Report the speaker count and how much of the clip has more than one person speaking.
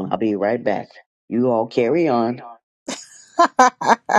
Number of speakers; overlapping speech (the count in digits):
1, no overlap